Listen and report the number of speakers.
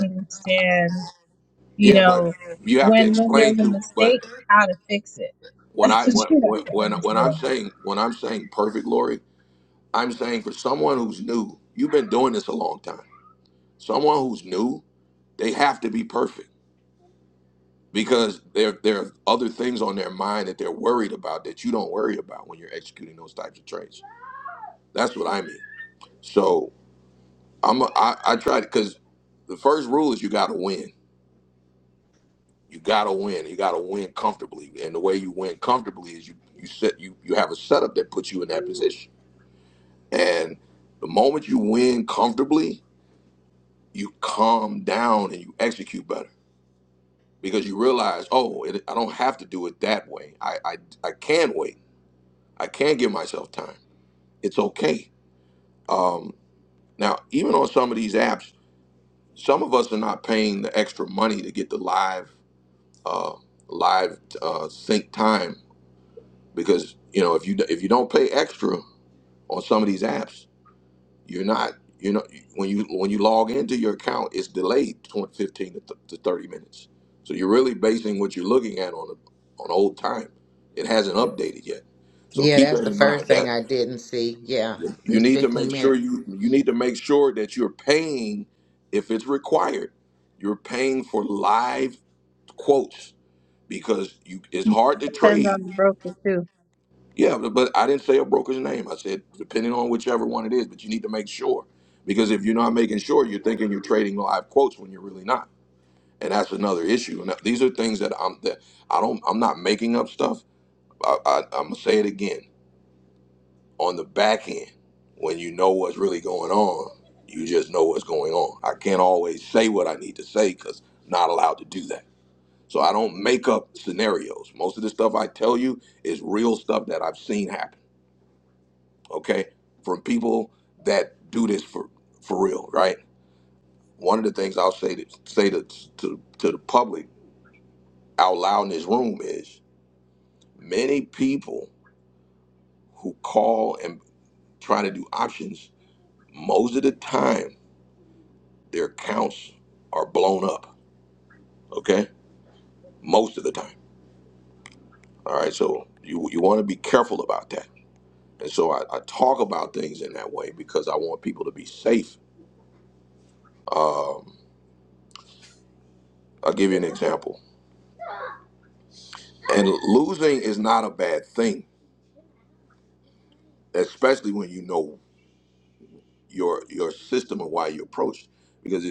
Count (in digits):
3